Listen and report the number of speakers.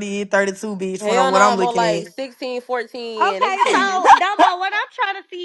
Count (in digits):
3